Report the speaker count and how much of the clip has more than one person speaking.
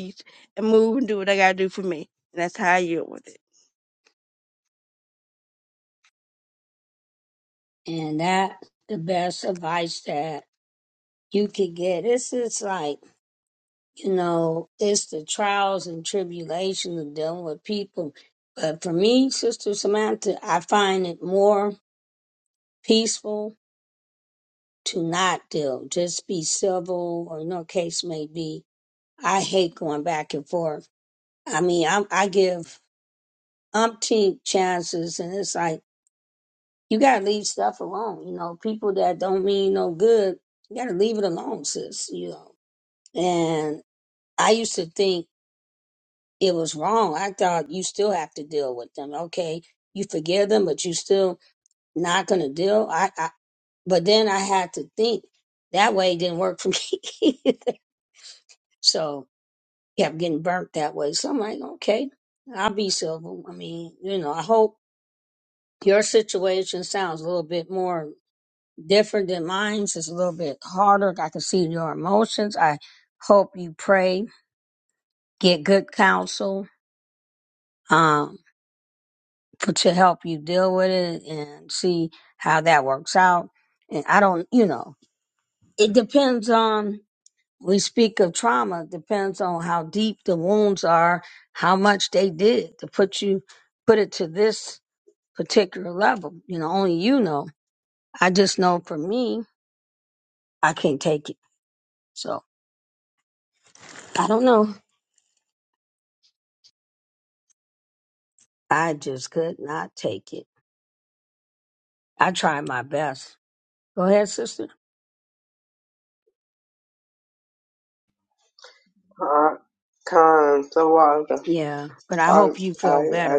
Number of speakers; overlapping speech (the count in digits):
3, about 1%